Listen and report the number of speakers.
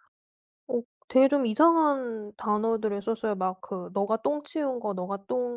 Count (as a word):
one